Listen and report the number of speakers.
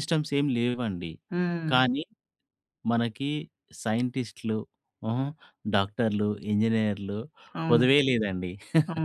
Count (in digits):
2